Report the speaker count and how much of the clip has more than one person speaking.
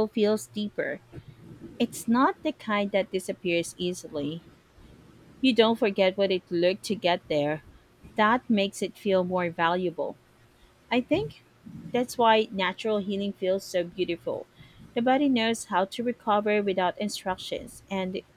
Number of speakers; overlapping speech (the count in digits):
1, no overlap